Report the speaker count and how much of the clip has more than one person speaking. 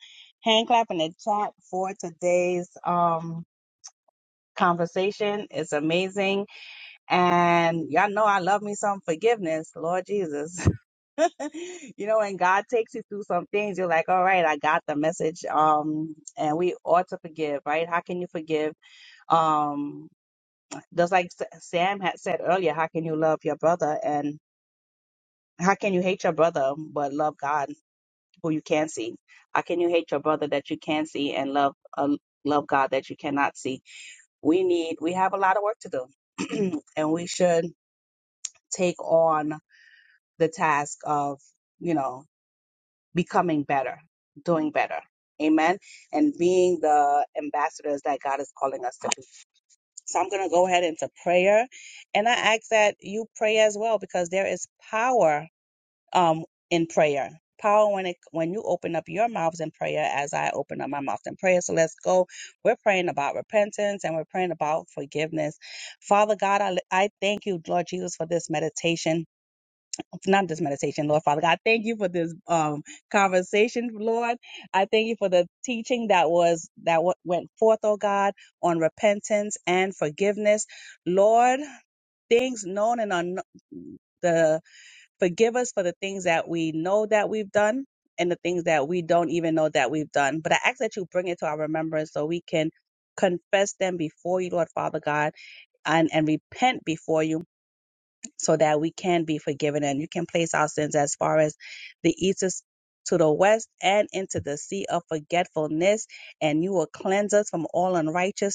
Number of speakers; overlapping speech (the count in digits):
1, no overlap